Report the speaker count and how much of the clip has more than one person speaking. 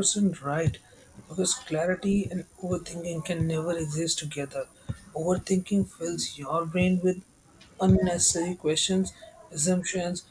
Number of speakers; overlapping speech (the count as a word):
one, no overlap